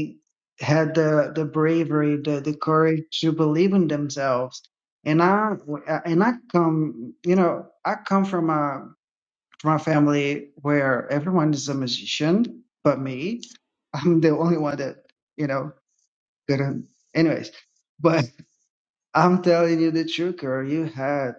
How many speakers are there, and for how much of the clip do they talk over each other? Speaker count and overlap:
one, no overlap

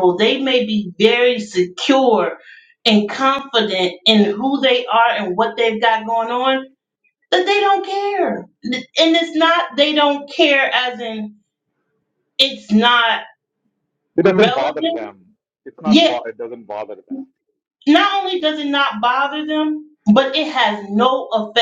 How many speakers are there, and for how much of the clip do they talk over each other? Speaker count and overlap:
two, about 6%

